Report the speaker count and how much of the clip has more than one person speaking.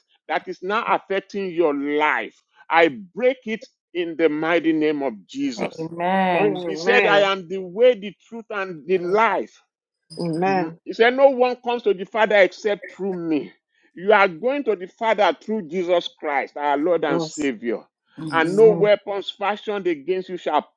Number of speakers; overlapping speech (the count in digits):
3, about 9%